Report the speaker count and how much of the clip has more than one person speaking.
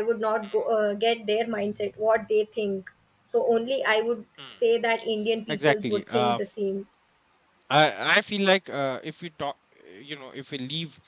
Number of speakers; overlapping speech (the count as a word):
two, about 8%